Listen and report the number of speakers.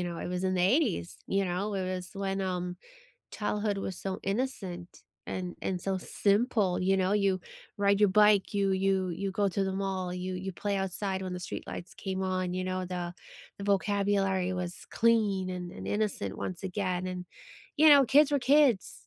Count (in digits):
1